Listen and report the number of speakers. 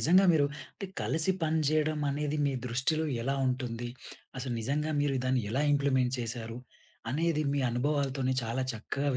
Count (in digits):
1